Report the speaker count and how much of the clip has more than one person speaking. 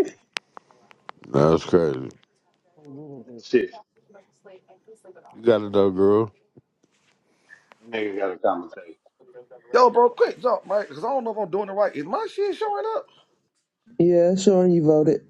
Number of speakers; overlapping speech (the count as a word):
four, no overlap